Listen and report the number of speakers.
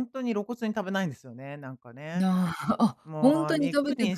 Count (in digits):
2